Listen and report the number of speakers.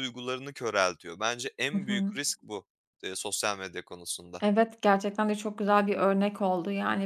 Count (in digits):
2